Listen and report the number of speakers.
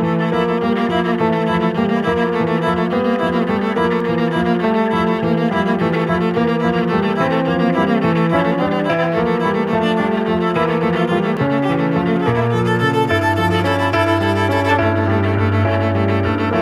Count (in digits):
0